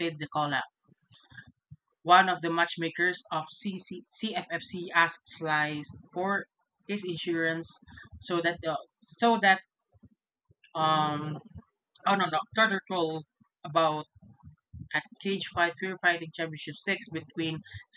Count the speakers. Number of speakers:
one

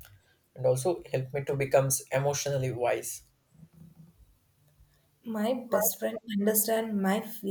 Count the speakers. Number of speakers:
two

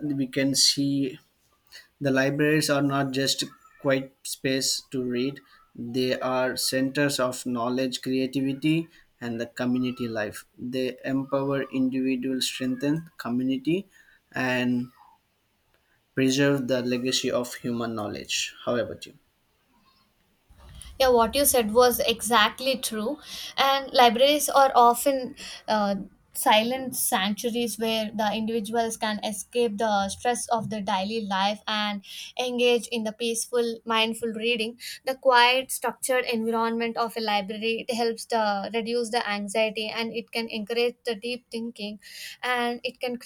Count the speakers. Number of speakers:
two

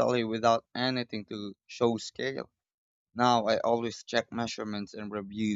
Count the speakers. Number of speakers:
one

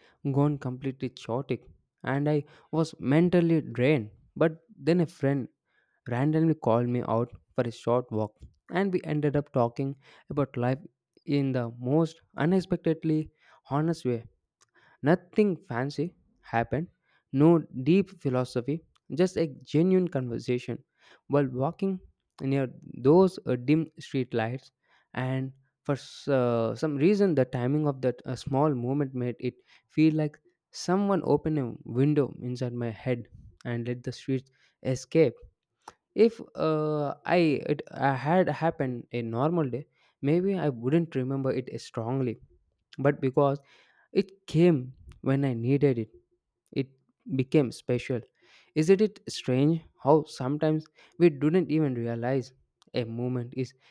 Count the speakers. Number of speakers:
one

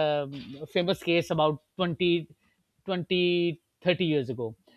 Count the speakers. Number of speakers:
one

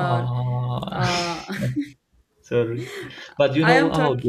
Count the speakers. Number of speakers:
two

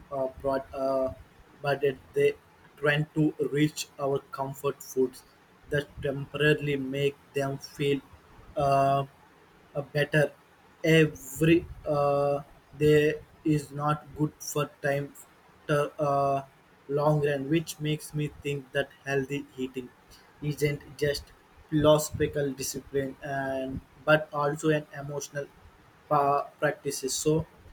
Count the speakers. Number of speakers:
one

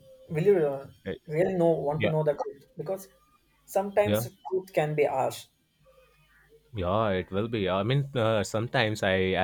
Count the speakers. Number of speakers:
two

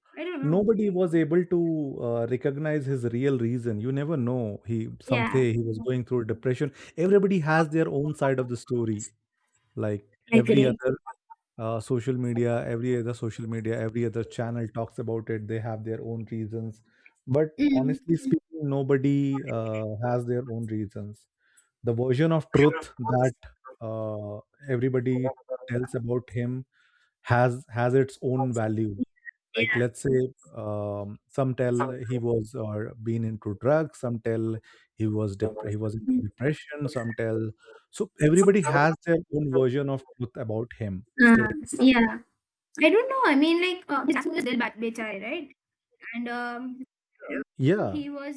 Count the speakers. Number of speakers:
two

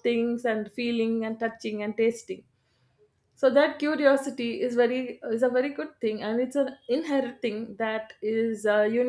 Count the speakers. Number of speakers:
one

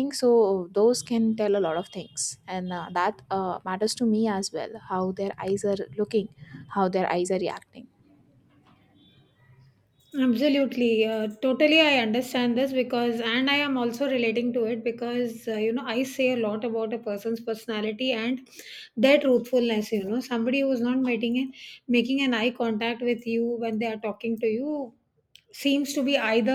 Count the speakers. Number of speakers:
two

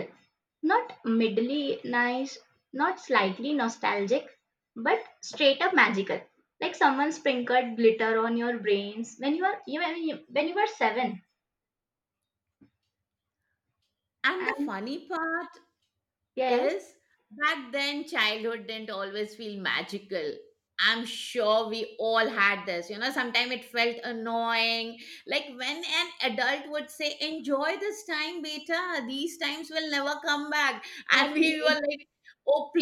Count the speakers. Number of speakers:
two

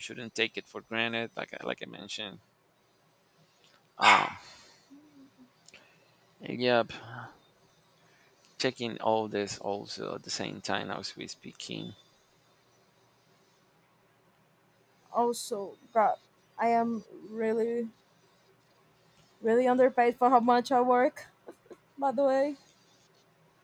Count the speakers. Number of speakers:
two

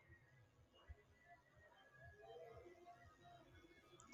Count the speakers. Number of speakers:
zero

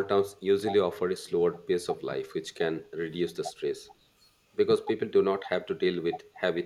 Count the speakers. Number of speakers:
one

